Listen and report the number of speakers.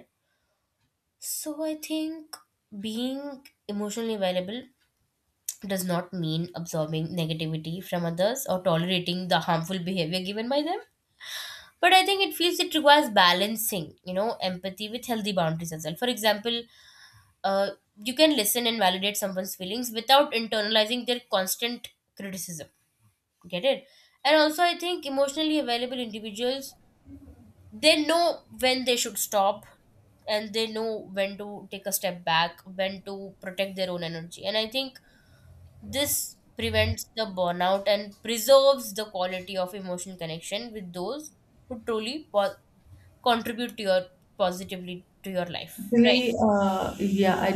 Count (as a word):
two